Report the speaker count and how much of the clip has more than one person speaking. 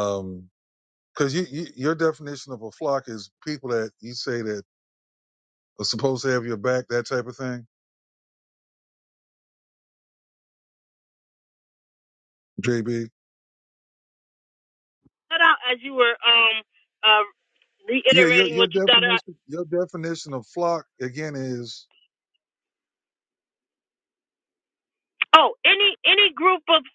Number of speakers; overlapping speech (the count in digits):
2, about 3%